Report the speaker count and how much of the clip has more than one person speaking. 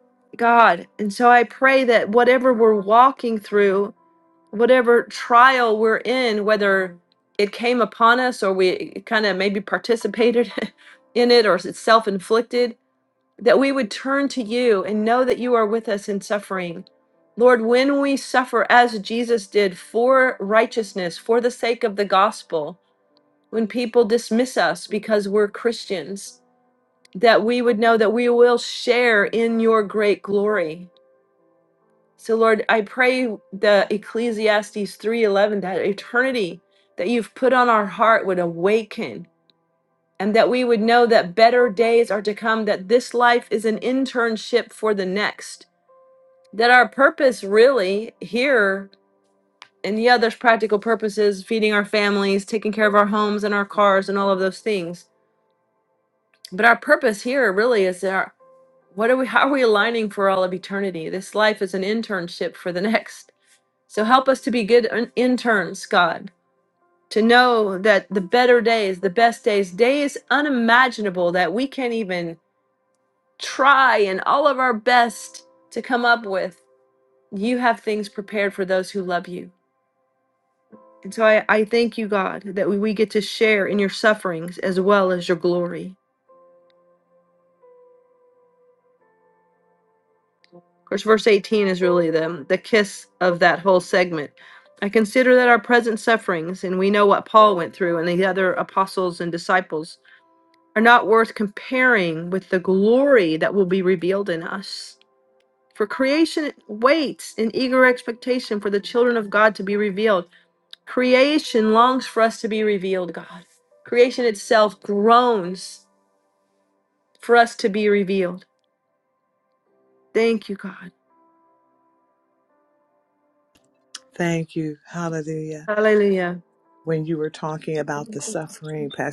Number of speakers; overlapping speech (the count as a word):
two, no overlap